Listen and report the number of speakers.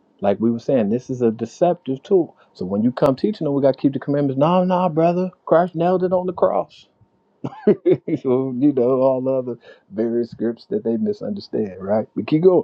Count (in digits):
1